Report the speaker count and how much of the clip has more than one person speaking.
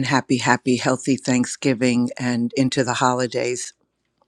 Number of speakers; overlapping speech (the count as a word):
one, no overlap